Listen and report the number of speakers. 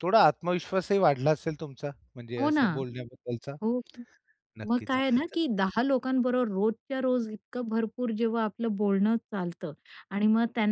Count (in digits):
2